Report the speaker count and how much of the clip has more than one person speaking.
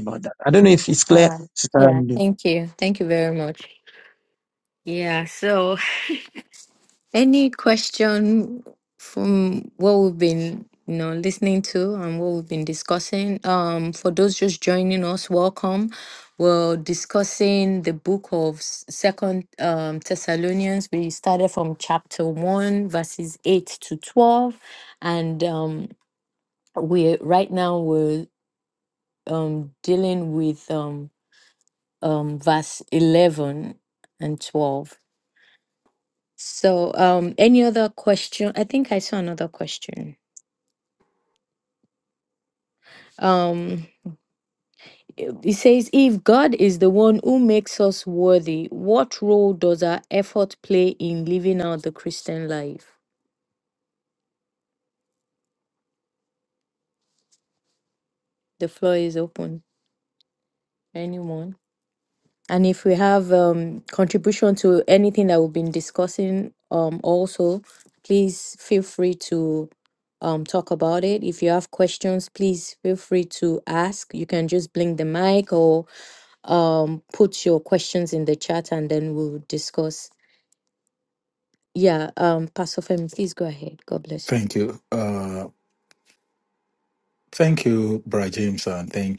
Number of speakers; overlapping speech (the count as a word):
three, about 1%